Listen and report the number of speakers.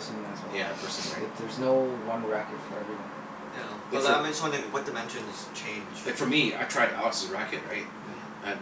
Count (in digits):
3